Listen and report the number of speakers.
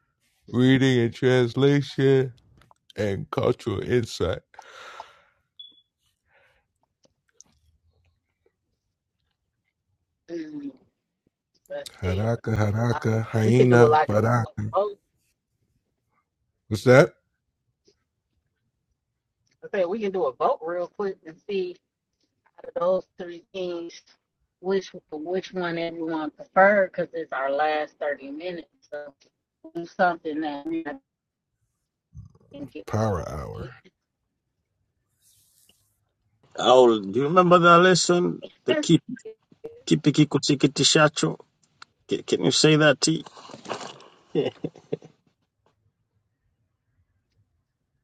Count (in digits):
3